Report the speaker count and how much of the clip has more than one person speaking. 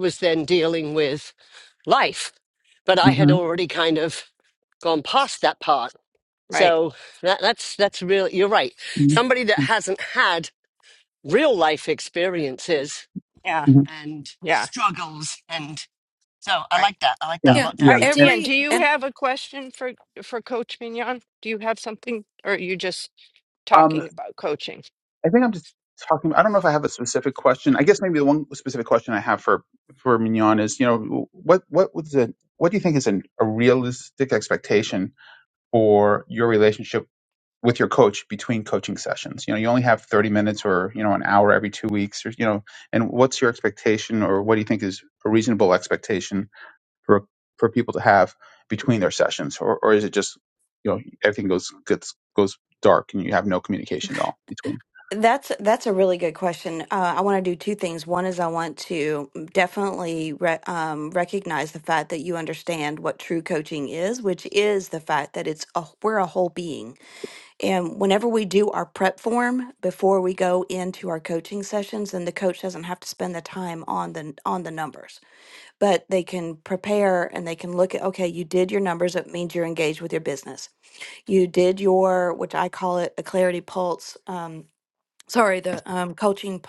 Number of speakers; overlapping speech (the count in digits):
4, about 3%